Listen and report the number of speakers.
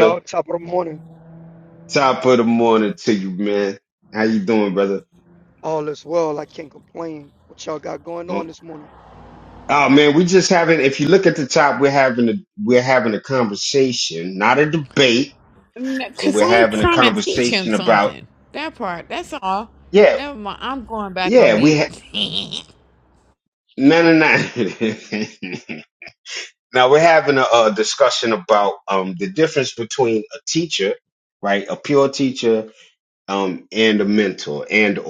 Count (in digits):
3